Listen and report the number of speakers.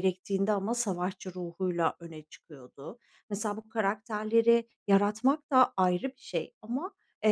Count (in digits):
1